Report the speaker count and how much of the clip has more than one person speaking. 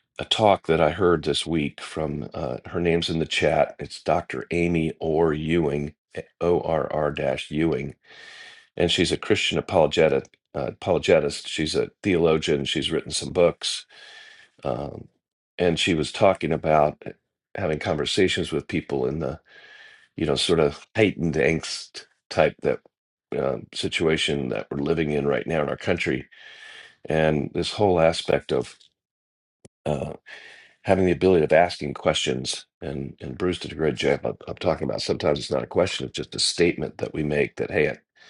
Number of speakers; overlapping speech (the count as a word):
one, no overlap